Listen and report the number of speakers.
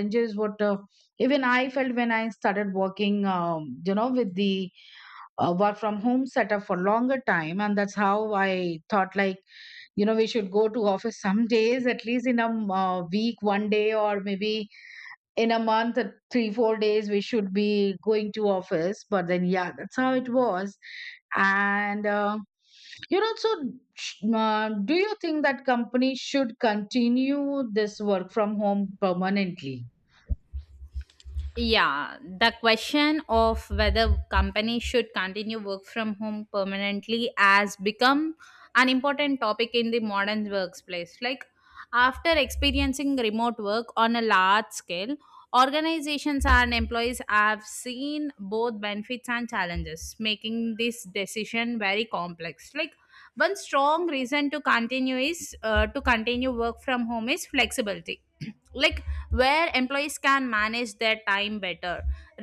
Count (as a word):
two